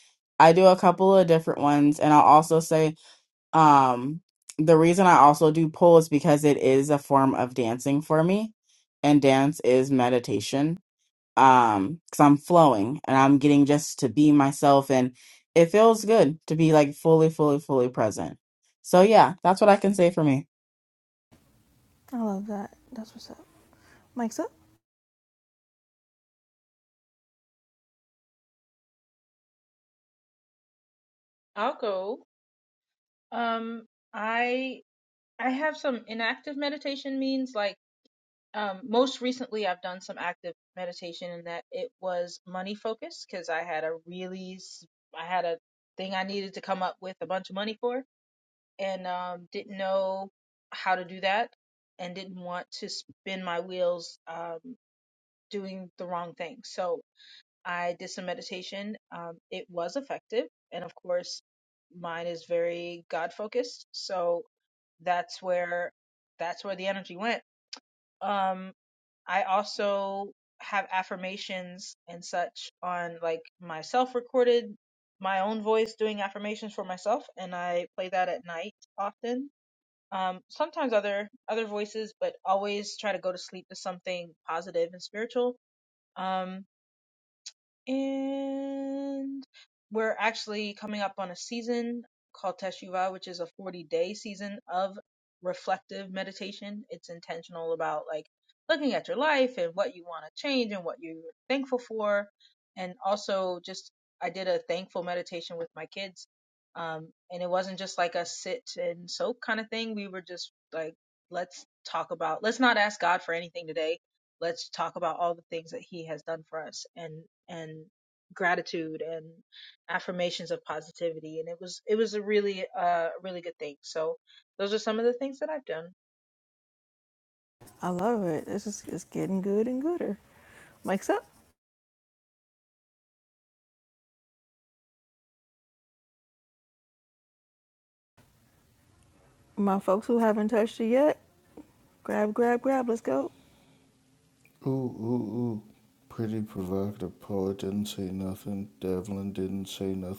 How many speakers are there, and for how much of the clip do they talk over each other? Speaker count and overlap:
4, no overlap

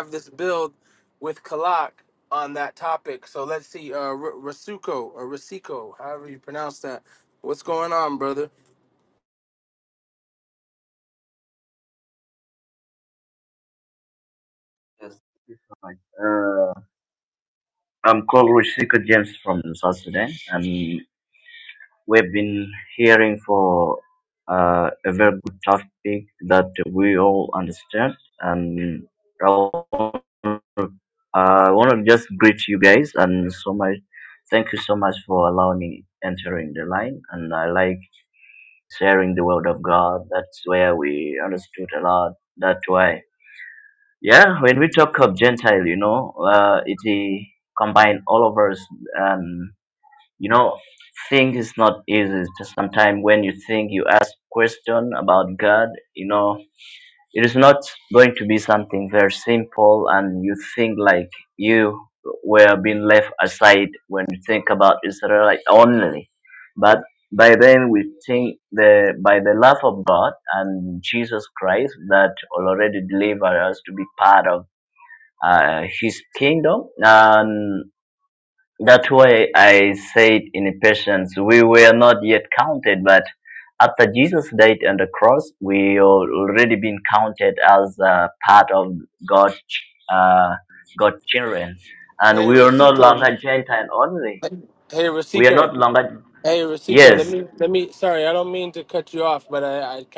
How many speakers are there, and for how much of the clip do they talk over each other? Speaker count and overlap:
2, about 2%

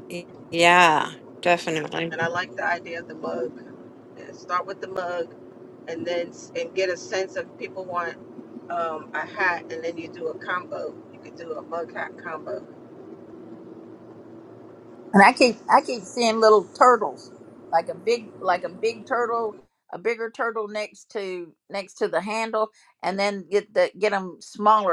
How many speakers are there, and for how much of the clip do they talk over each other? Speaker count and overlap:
3, under 1%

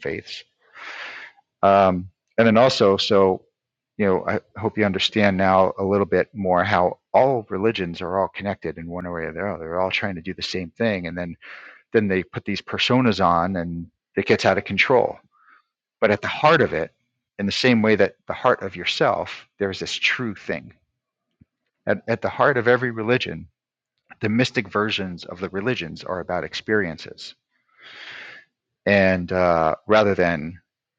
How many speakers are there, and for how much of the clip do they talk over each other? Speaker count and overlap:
1, no overlap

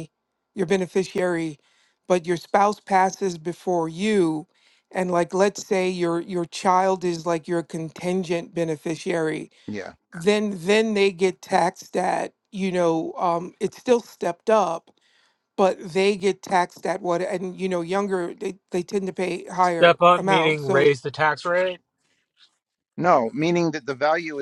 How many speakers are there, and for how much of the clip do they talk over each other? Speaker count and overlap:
3, about 5%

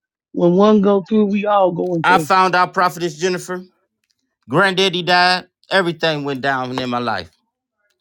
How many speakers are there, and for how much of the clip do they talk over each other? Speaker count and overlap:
2, about 3%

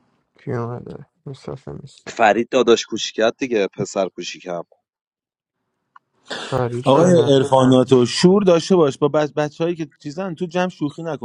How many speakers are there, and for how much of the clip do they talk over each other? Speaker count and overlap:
3, about 5%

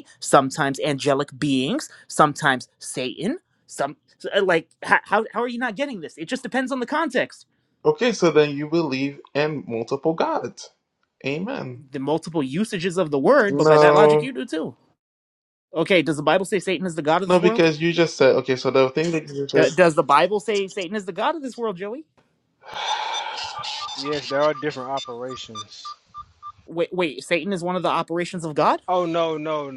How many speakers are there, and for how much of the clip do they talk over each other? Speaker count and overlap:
3, about 4%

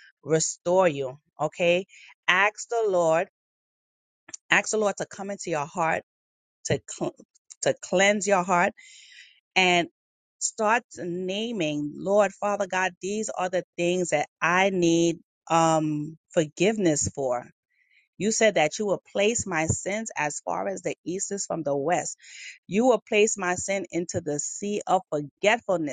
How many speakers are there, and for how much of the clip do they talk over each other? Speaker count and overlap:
1, no overlap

